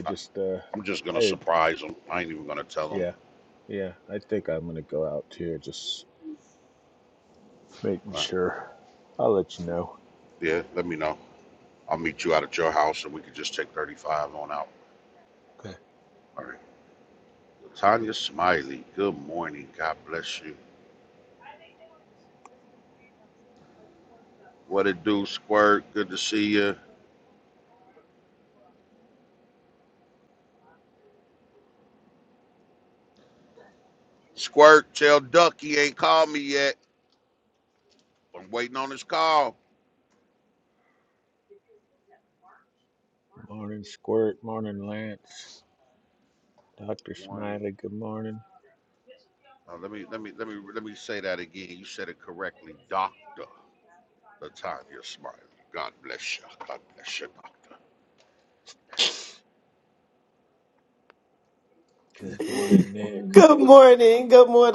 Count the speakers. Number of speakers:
3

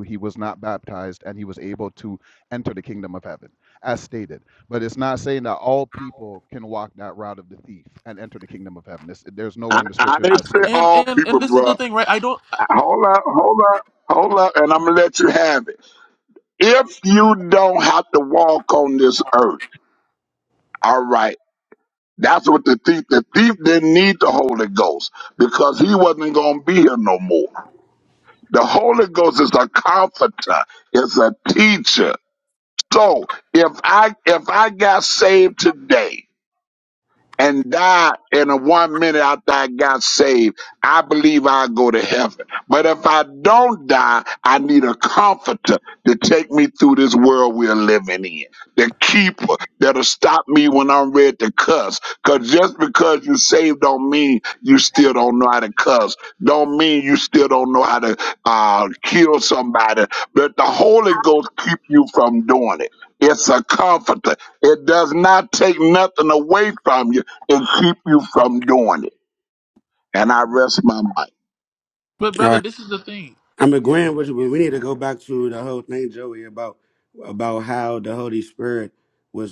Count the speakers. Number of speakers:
4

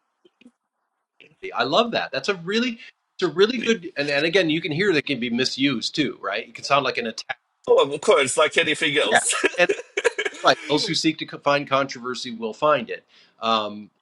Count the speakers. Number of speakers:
2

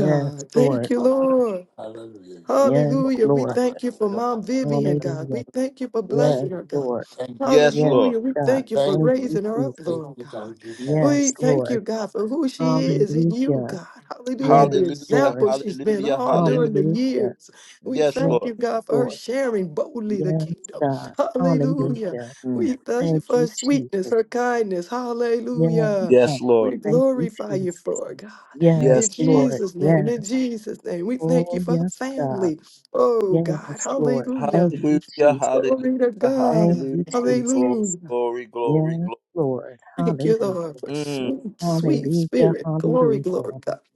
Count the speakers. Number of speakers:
4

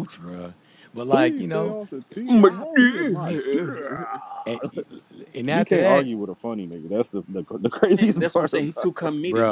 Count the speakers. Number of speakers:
3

